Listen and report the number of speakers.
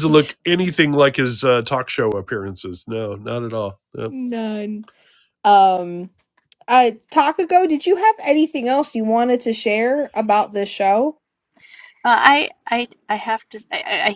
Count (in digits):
3